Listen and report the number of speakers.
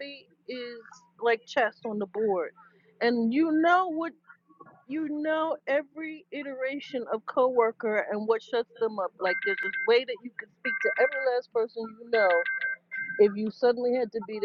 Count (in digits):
1